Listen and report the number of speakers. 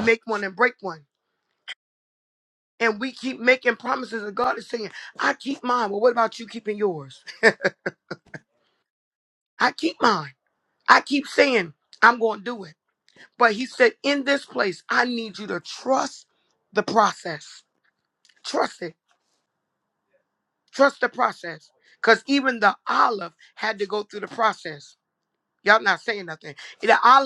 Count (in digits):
1